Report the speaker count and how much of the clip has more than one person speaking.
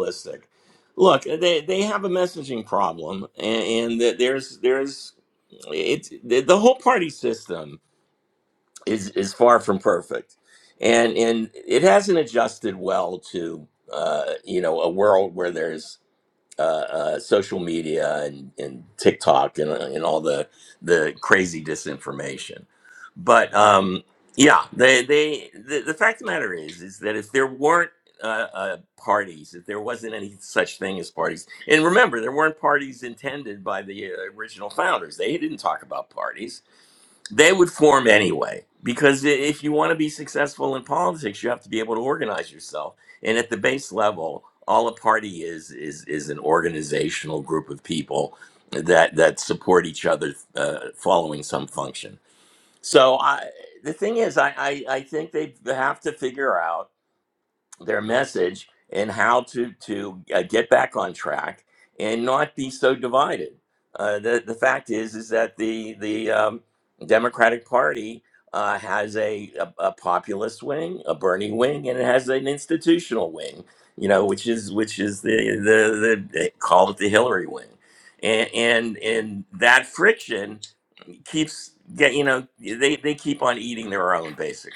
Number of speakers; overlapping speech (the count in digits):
1, no overlap